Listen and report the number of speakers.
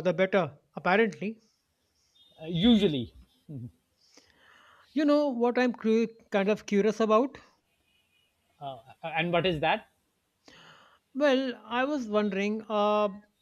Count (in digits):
2